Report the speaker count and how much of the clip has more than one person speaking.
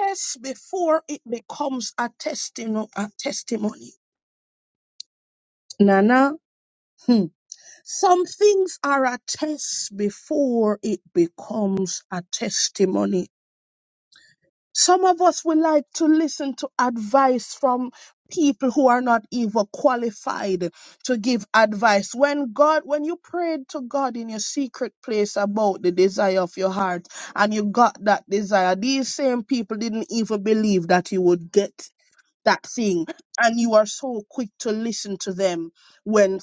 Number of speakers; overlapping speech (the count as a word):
one, no overlap